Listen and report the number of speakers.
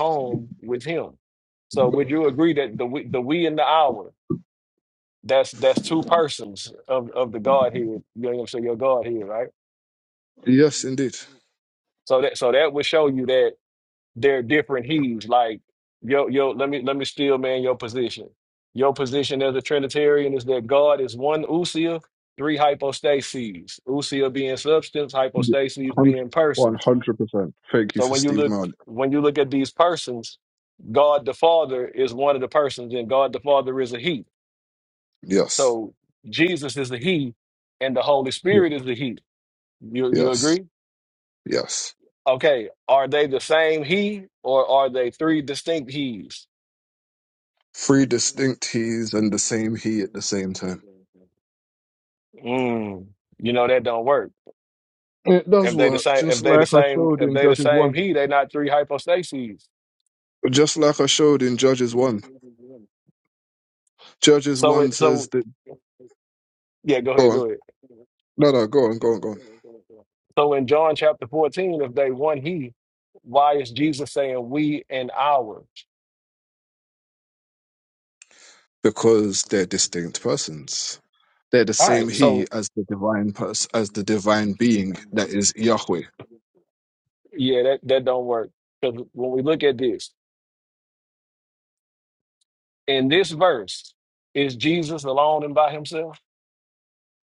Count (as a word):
two